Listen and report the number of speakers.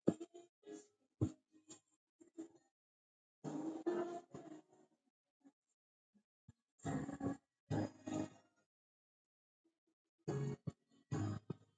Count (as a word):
zero